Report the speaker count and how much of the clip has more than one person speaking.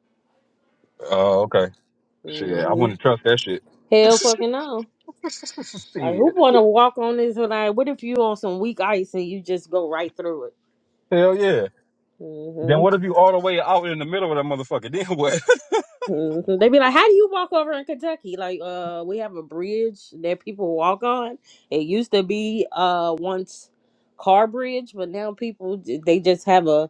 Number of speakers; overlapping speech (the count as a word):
two, about 4%